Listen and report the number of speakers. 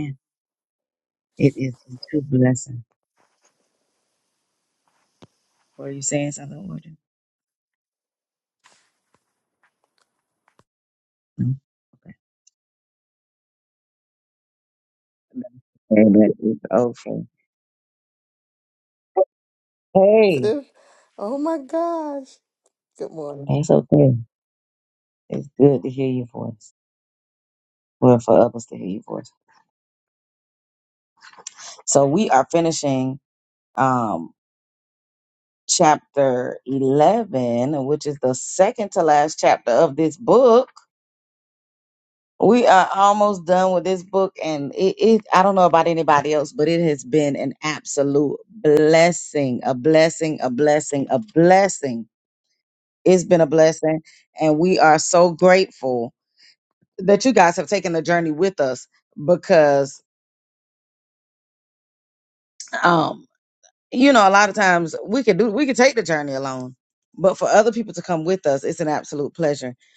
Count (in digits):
2